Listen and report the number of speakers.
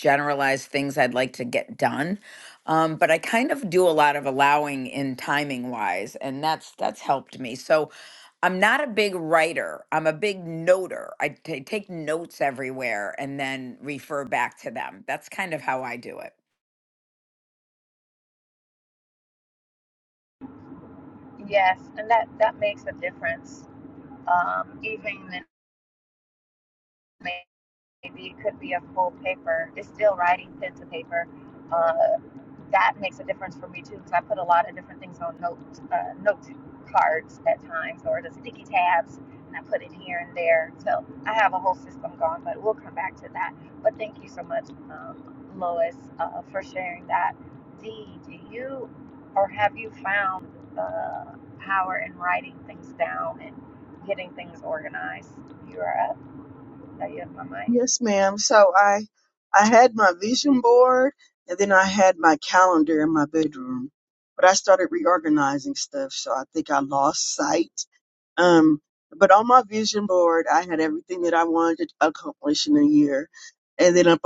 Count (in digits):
3